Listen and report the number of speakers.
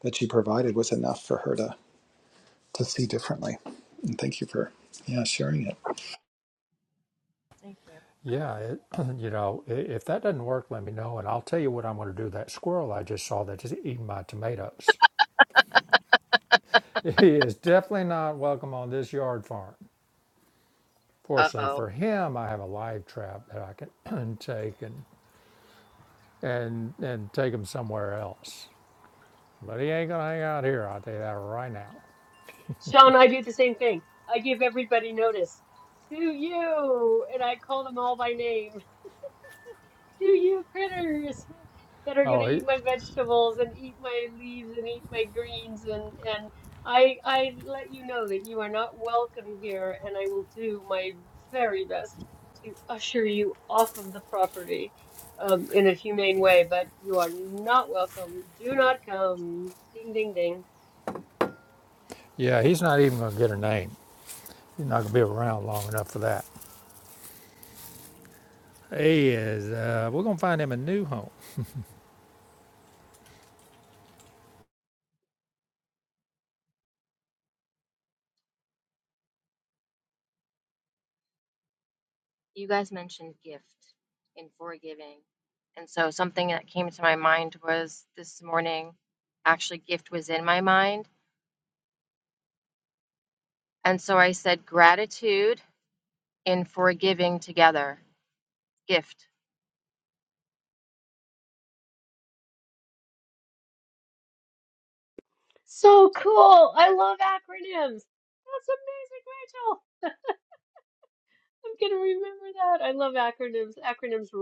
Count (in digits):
4